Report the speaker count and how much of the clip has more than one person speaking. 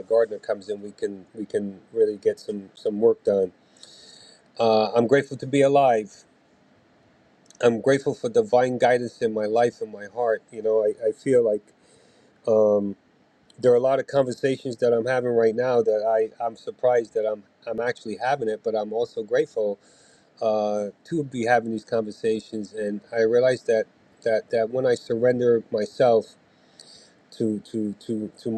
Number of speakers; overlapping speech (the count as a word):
one, no overlap